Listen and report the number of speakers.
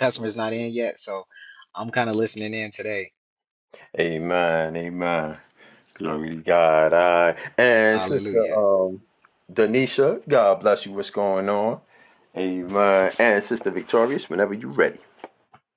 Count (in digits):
2